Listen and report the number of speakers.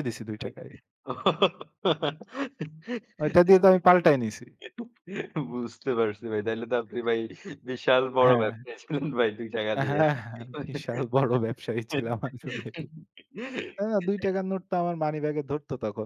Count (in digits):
2